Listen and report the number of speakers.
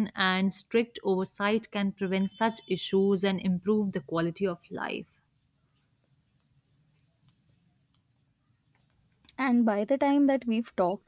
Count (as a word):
two